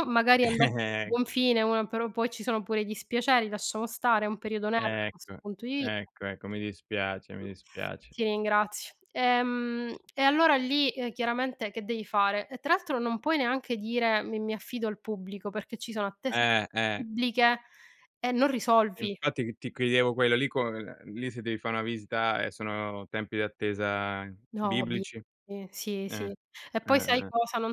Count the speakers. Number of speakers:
2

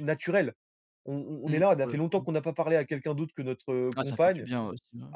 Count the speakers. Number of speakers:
2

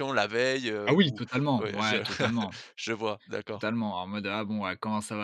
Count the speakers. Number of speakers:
2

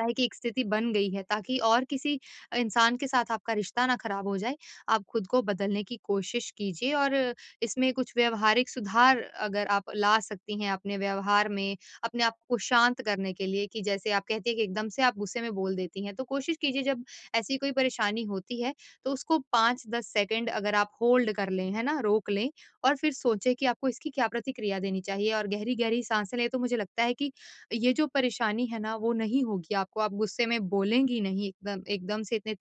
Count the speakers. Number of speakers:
1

